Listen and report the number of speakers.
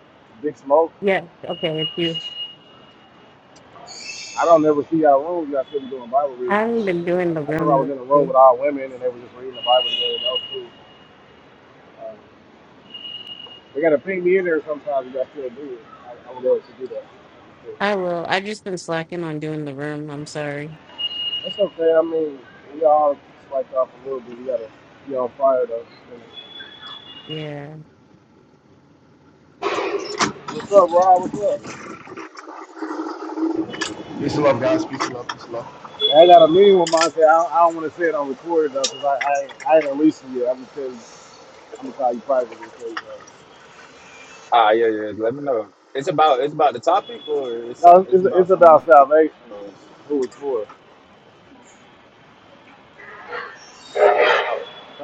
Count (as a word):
four